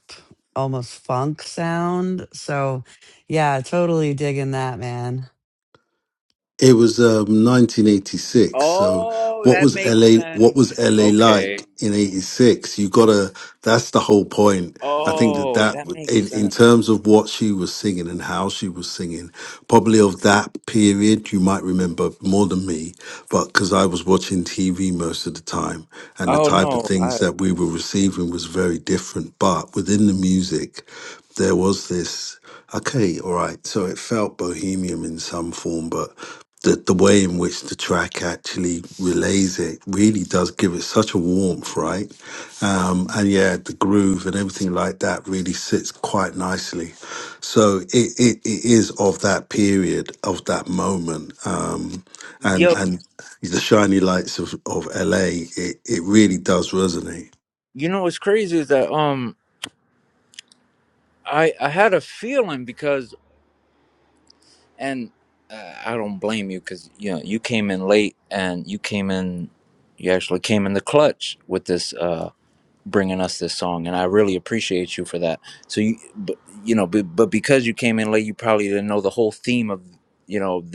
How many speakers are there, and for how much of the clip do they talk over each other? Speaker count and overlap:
three, about 7%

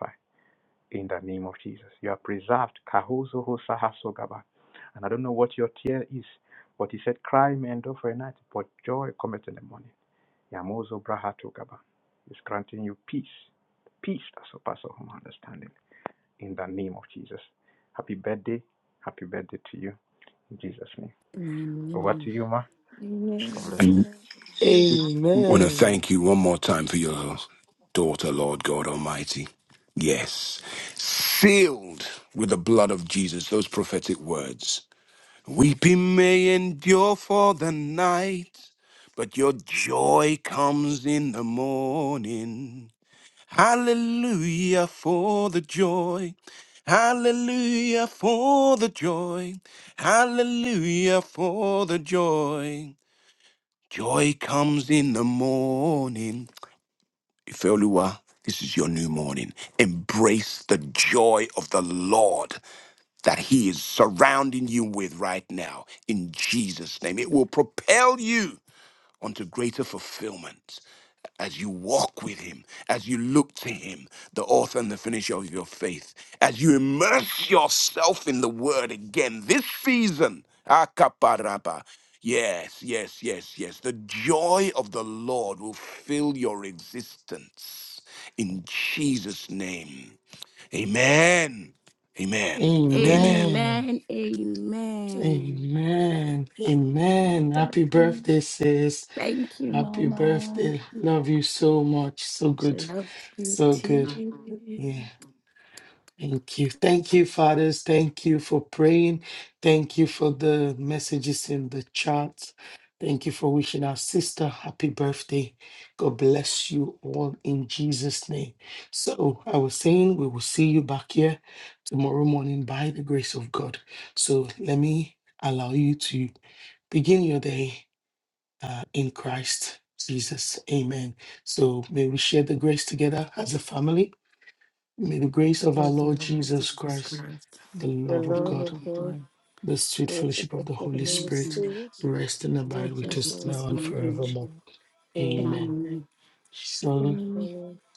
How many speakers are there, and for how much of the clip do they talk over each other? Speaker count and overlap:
five, about 9%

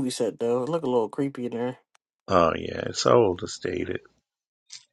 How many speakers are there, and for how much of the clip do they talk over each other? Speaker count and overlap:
two, no overlap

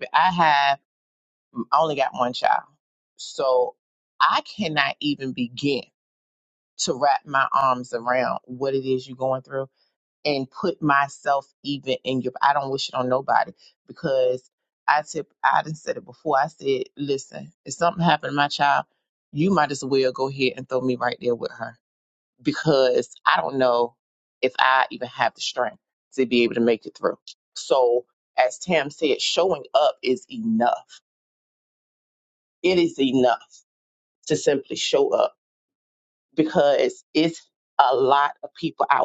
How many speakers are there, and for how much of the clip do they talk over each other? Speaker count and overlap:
one, no overlap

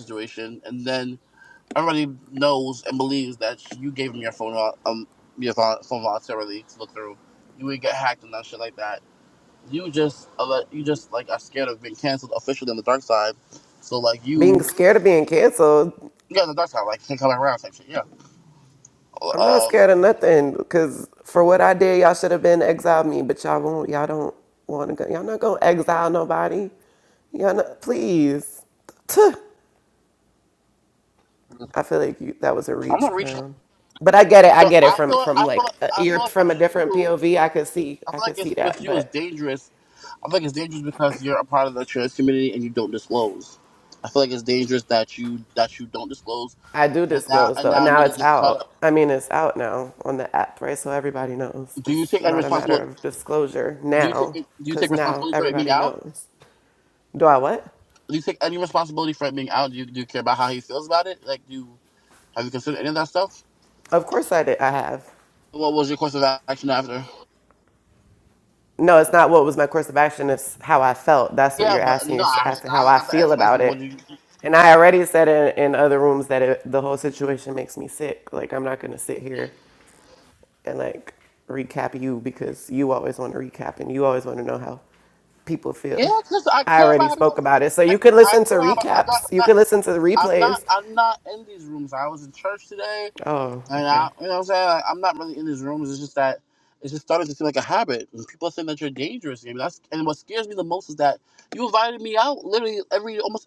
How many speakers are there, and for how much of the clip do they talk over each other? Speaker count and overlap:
two, about 14%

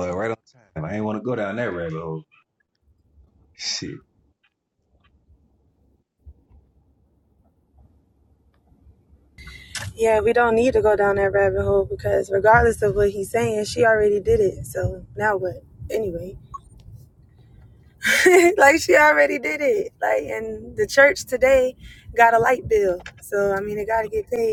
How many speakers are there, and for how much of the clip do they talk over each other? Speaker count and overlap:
two, no overlap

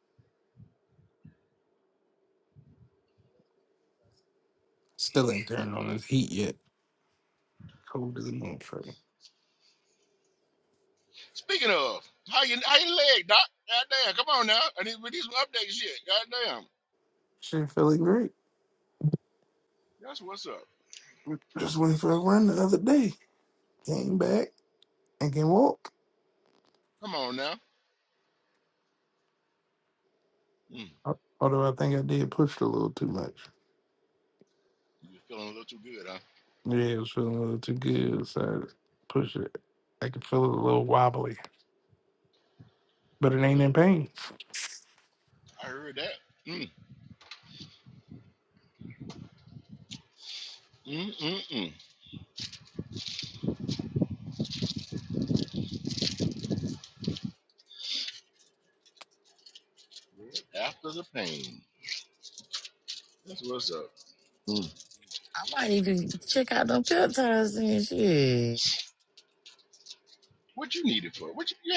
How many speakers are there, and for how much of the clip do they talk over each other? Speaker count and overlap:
three, no overlap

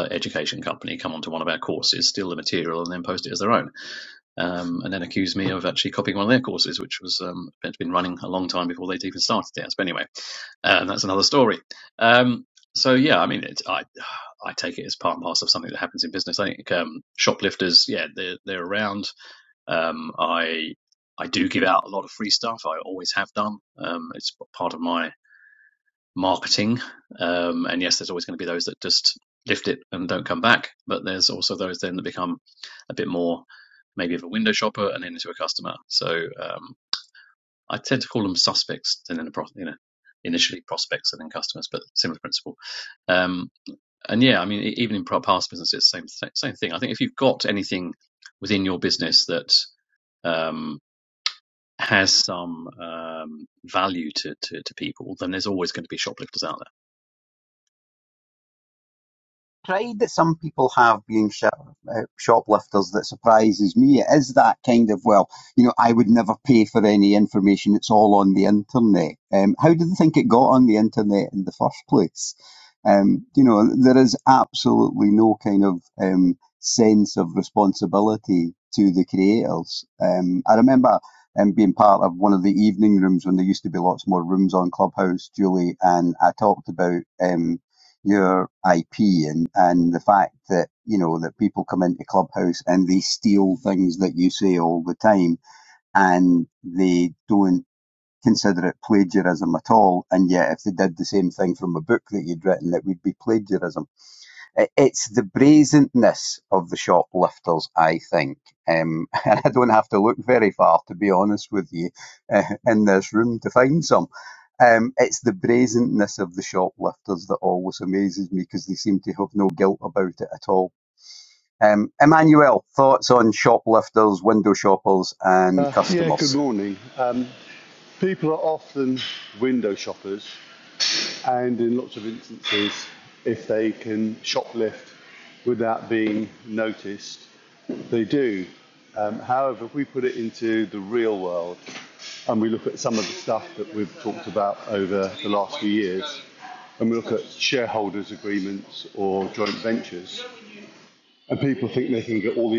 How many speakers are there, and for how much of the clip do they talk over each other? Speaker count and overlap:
three, about 1%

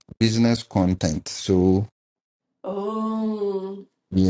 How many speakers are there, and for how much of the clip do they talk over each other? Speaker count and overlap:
two, no overlap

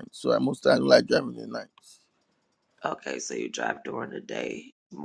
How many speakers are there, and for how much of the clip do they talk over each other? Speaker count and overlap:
two, no overlap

